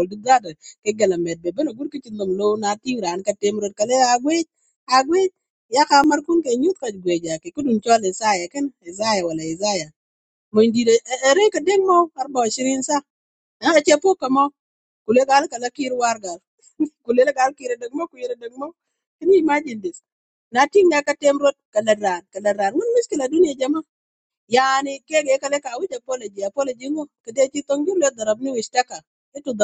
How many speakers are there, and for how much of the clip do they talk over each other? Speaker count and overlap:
1, no overlap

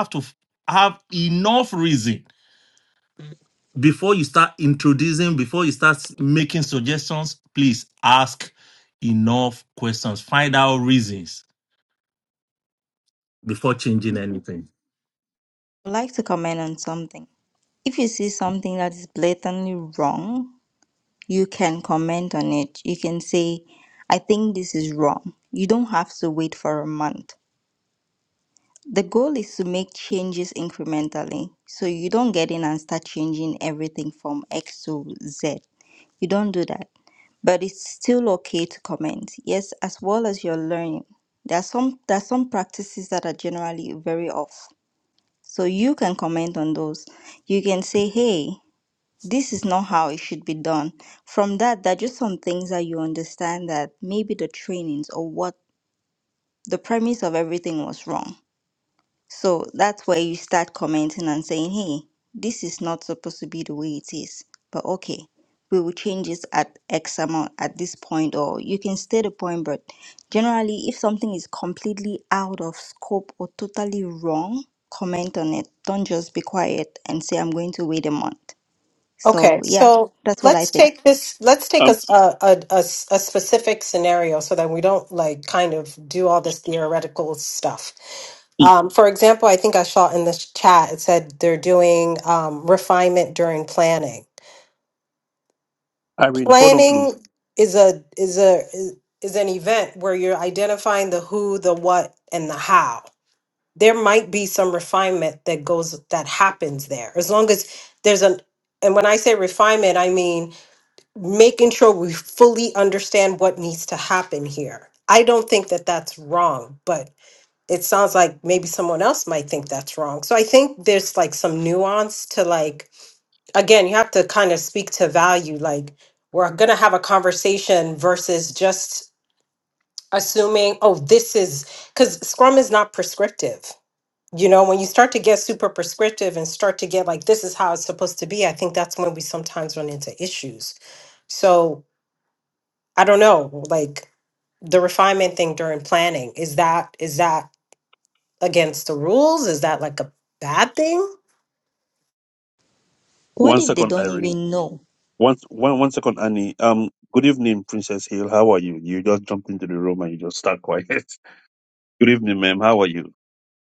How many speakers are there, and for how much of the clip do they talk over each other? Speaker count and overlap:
4, about 2%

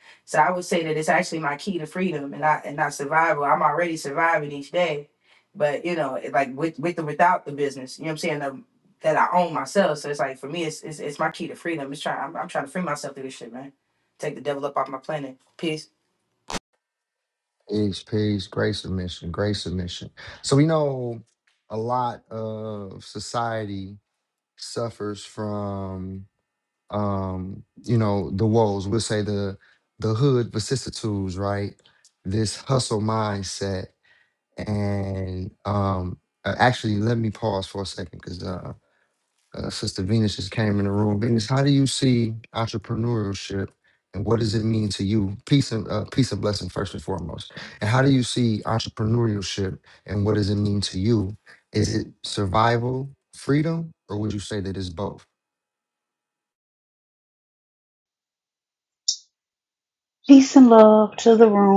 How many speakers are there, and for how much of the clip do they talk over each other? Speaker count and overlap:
3, no overlap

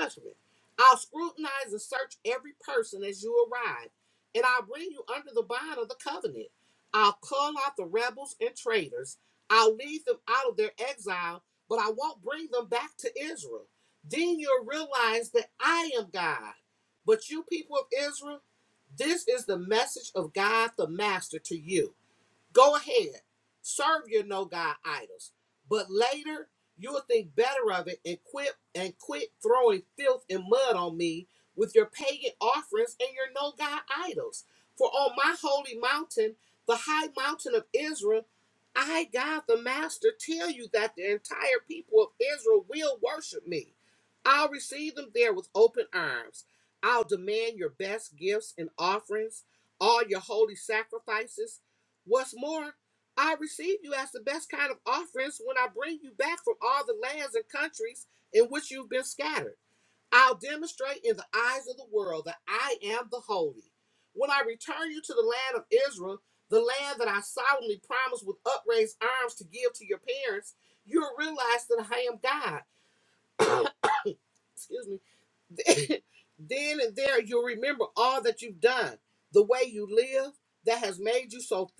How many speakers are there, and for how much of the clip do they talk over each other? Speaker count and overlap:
1, no overlap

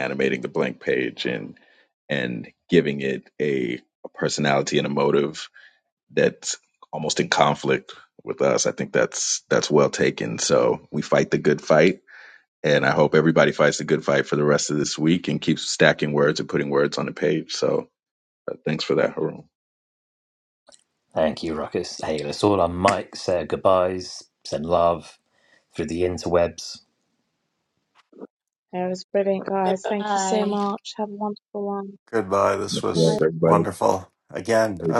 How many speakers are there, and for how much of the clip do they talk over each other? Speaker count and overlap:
4, about 2%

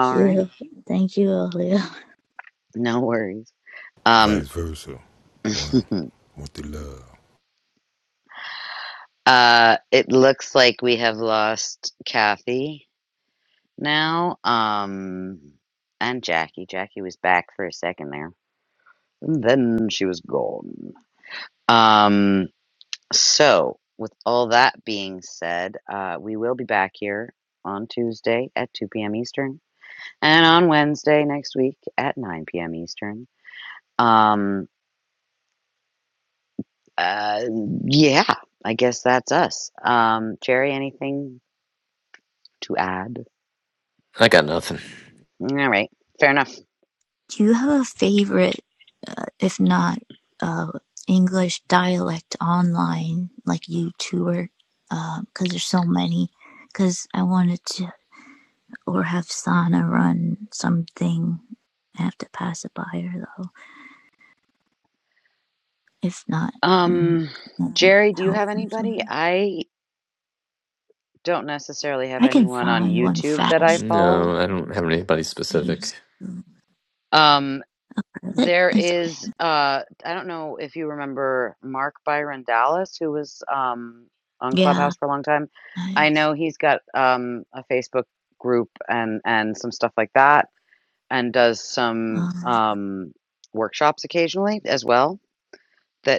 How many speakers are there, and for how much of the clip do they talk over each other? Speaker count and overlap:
4, about 7%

